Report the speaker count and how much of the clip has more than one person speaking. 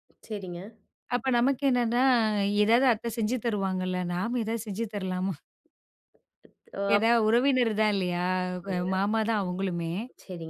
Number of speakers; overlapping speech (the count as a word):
two, about 5%